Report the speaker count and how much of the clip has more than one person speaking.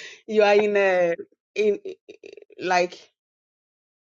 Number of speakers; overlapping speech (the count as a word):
one, no overlap